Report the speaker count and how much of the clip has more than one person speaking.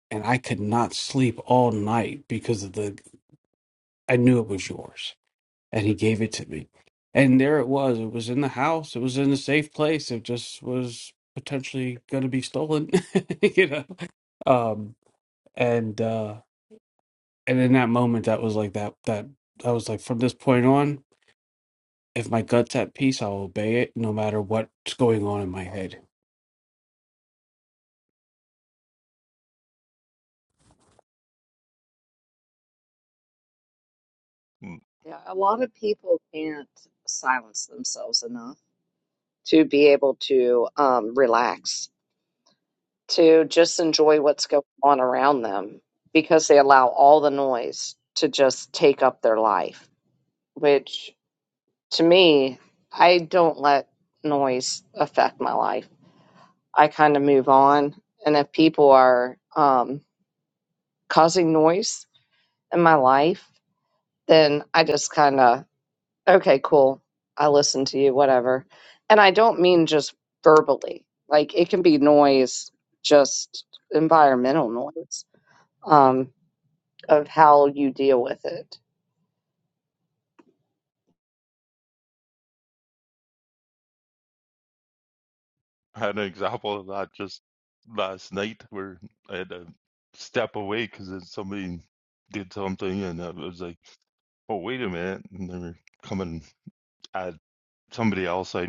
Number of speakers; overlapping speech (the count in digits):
3, no overlap